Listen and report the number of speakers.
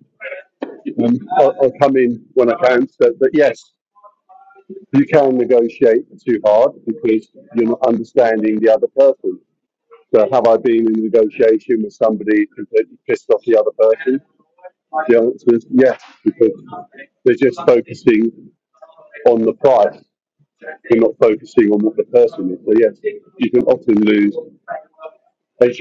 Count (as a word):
one